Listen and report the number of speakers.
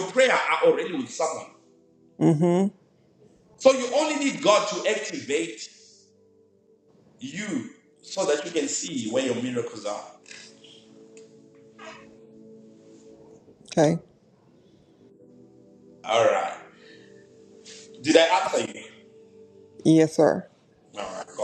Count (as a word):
two